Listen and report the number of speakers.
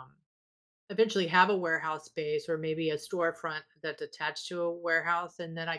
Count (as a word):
one